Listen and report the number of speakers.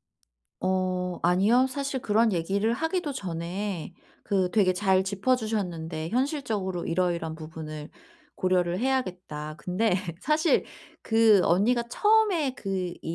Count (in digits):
1